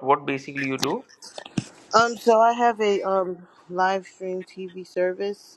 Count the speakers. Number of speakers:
2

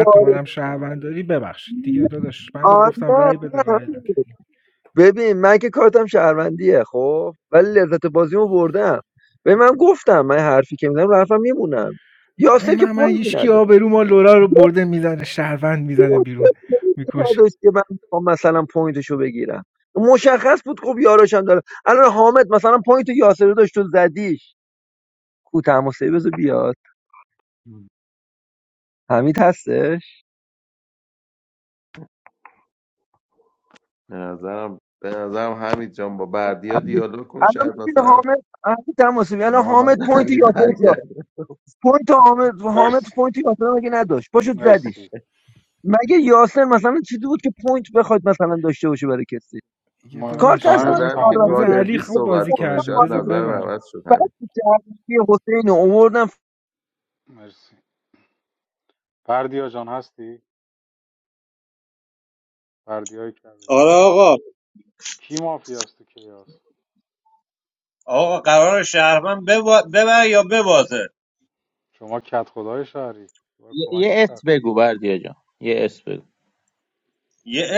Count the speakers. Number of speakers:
6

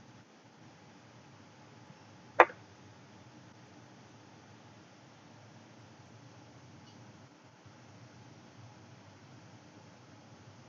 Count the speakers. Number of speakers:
0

